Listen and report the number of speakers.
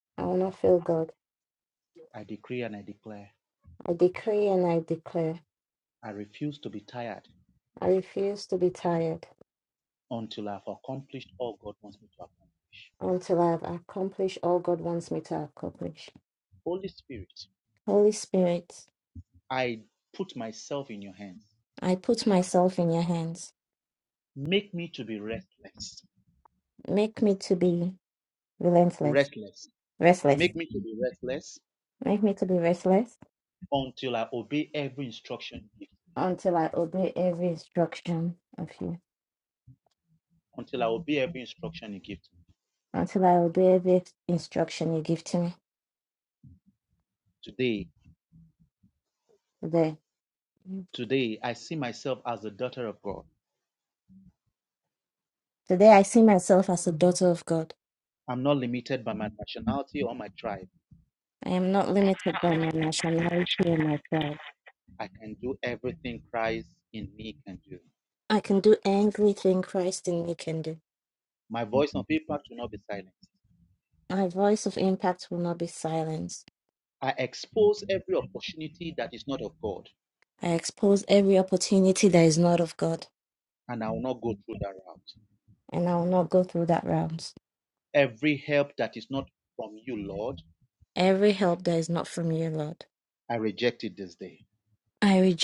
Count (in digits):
2